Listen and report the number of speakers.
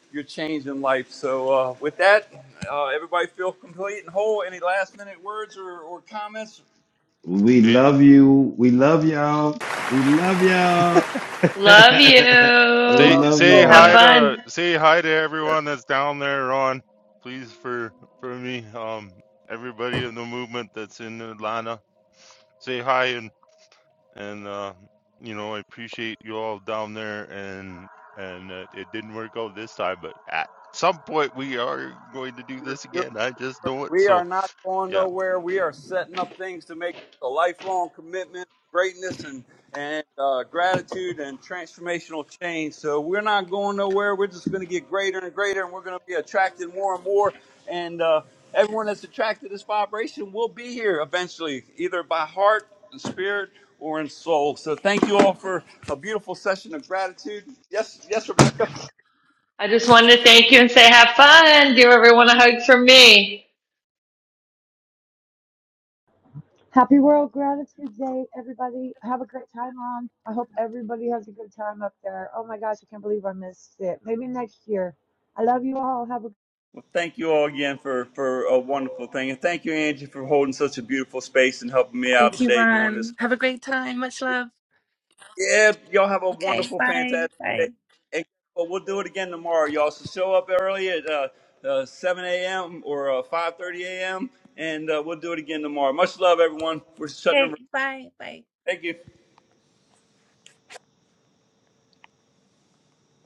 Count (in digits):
6